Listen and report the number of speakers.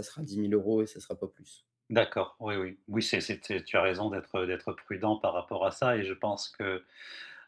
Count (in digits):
2